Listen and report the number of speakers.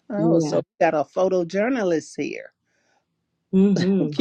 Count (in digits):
2